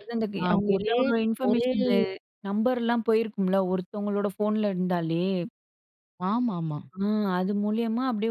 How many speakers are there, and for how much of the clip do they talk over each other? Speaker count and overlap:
2, about 11%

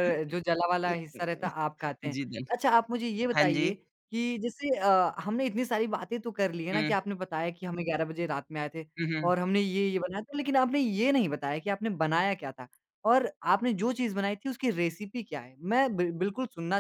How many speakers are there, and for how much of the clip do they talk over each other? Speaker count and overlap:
2, about 5%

